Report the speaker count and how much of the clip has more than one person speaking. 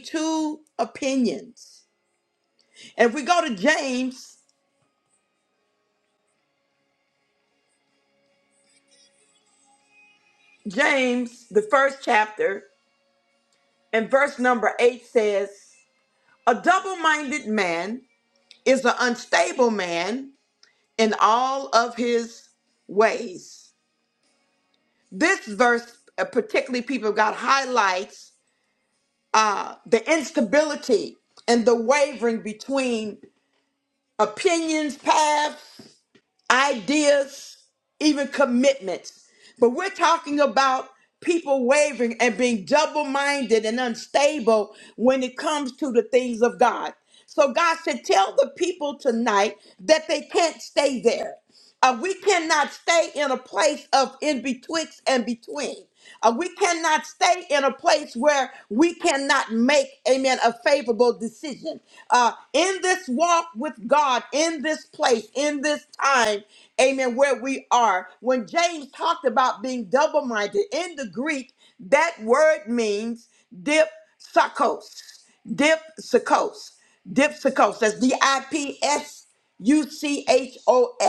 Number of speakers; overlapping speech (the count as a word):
one, no overlap